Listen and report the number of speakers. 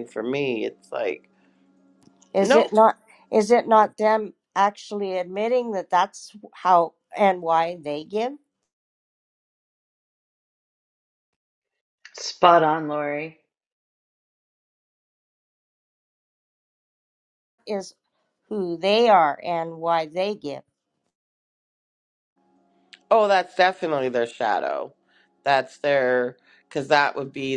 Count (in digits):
3